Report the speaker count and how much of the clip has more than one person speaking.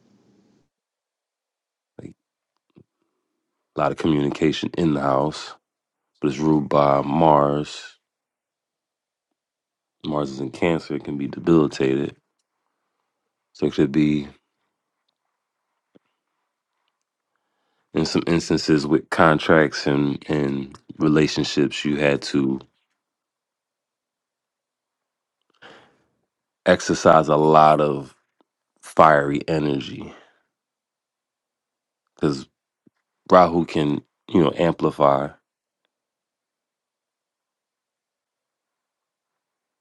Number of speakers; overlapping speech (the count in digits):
1, no overlap